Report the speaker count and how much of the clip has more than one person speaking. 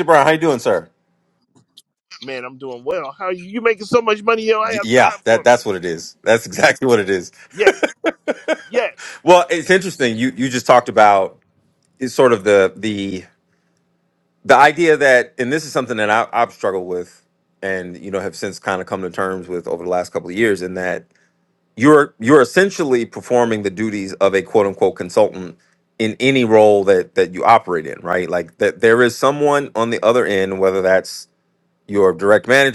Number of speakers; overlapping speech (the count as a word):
two, about 2%